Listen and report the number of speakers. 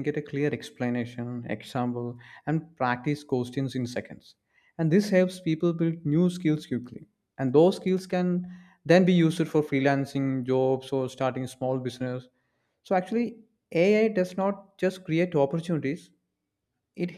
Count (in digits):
1